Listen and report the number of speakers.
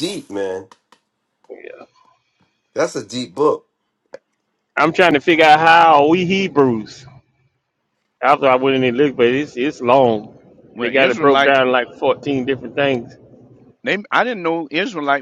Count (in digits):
3